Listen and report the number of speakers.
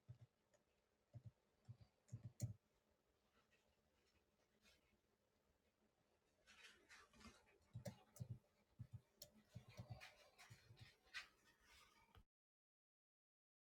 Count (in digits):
0